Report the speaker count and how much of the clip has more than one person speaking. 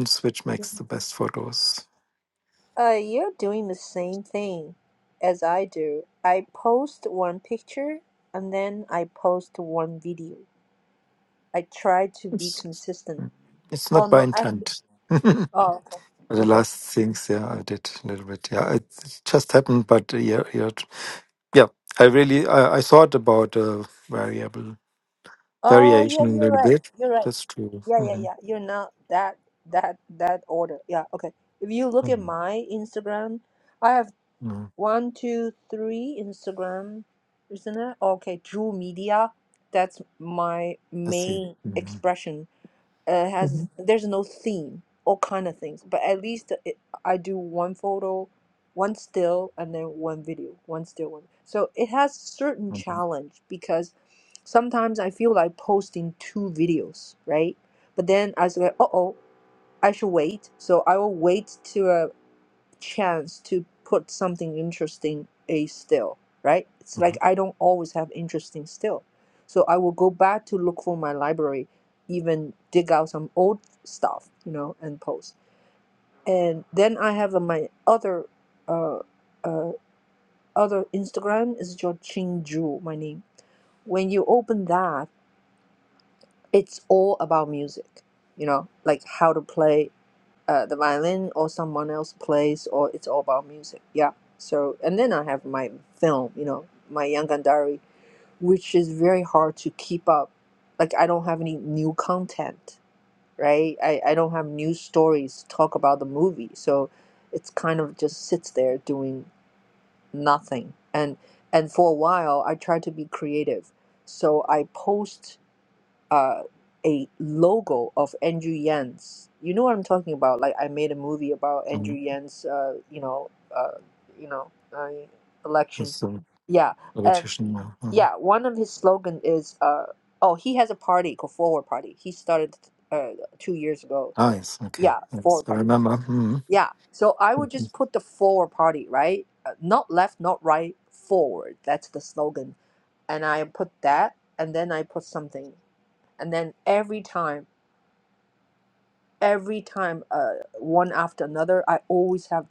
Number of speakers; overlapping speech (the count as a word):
two, about 3%